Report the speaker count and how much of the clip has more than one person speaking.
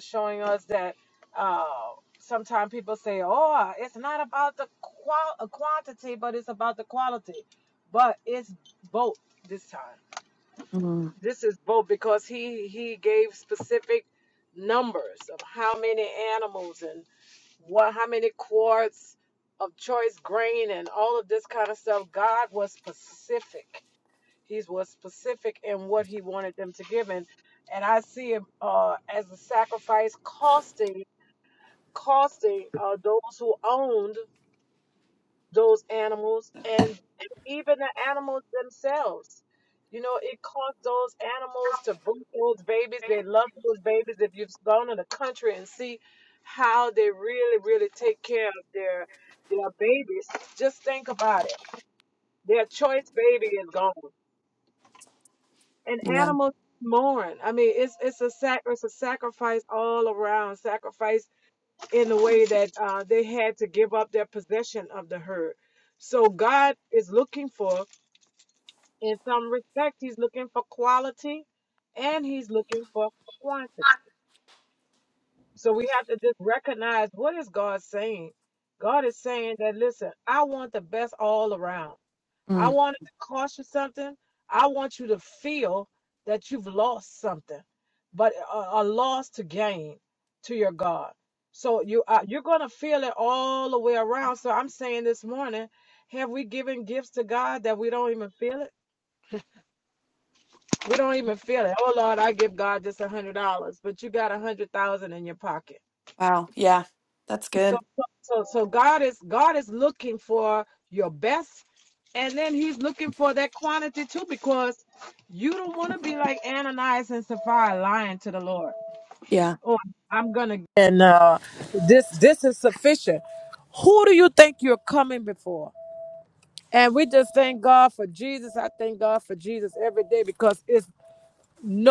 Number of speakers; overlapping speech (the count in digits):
2, about 1%